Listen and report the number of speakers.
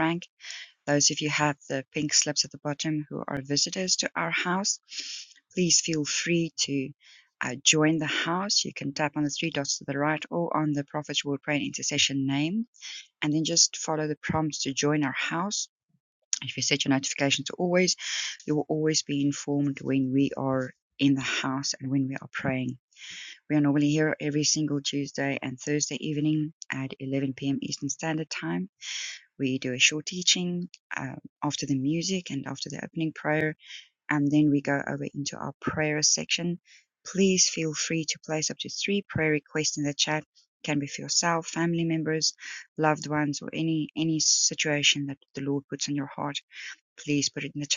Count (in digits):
1